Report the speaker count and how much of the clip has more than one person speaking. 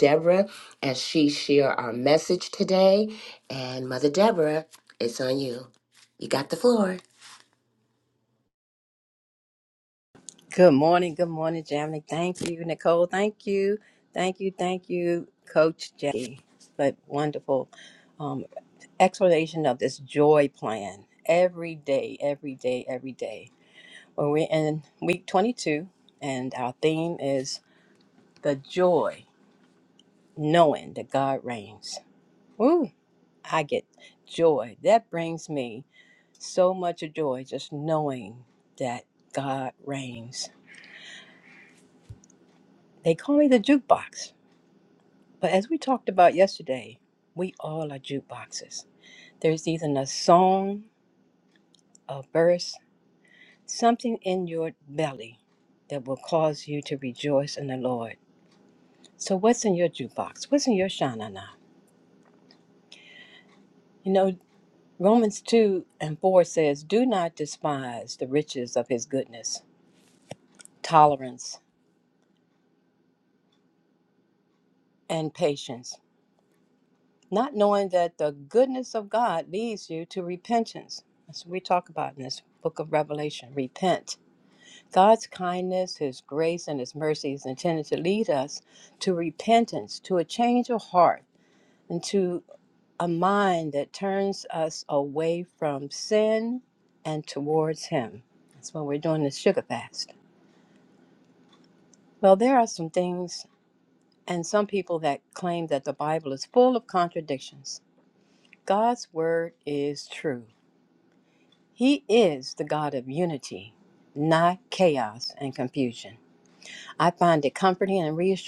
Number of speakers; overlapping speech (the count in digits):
2, no overlap